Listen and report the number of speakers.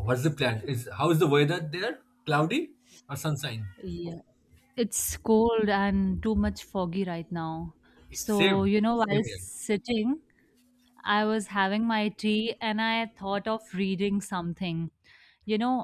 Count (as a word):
two